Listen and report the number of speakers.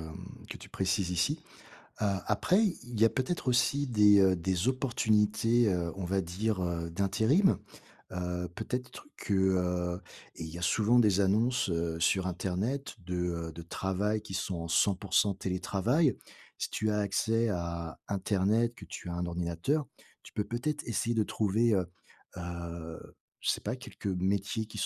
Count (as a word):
one